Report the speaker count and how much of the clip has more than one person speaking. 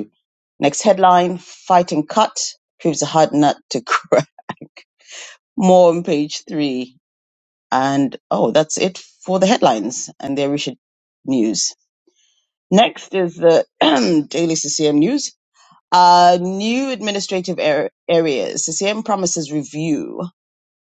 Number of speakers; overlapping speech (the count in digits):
1, no overlap